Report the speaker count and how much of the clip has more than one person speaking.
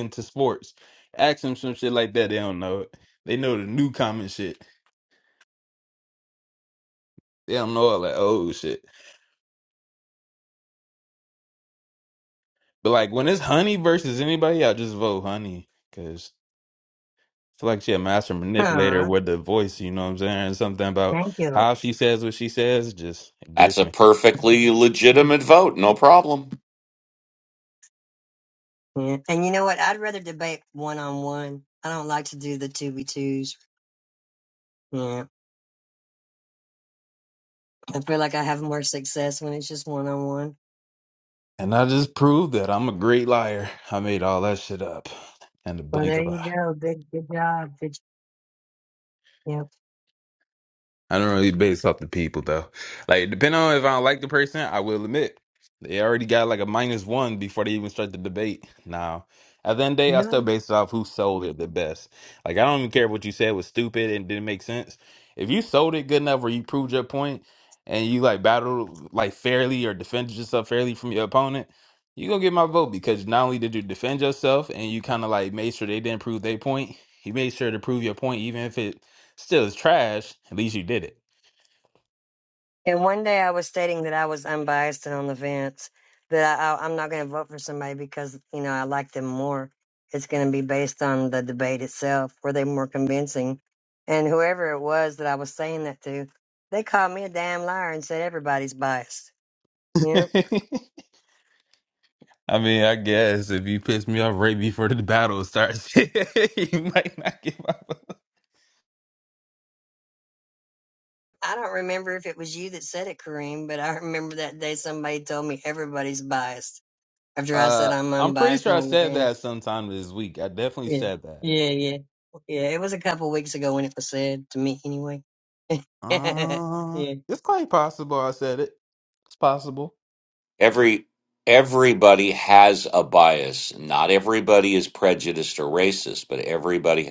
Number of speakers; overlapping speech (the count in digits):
3, about 3%